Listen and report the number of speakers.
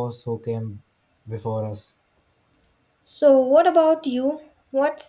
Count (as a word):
two